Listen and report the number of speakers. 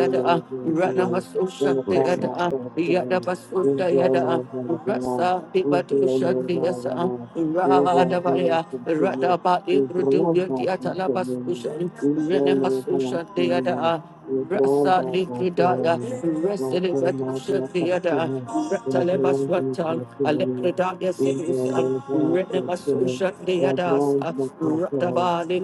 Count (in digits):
2